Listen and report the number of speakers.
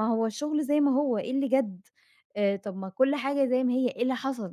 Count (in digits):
1